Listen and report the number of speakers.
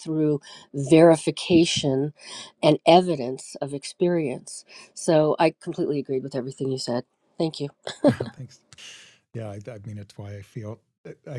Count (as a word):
two